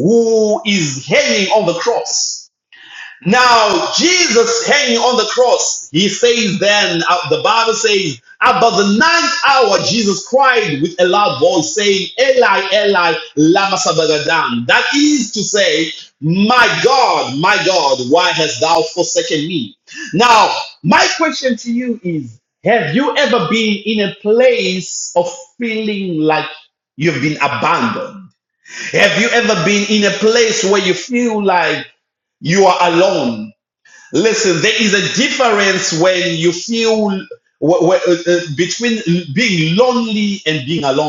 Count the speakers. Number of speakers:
1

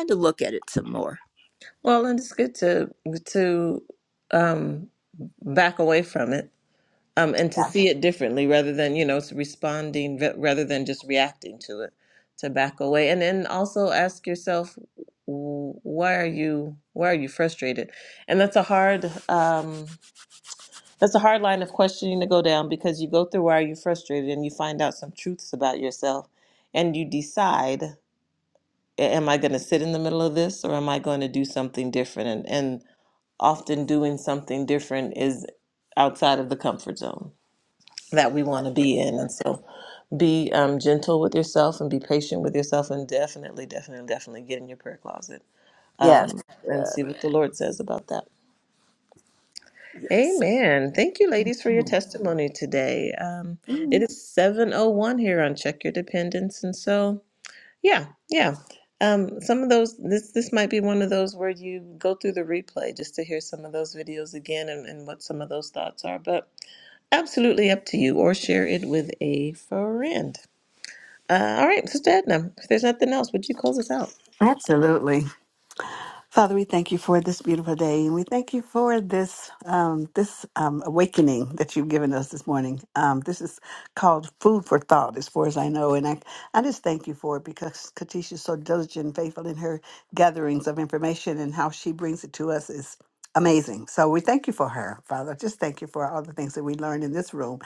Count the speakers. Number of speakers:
3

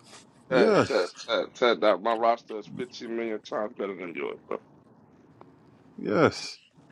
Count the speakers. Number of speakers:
2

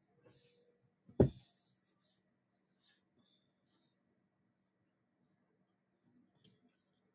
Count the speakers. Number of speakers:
0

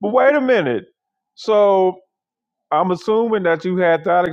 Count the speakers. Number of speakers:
1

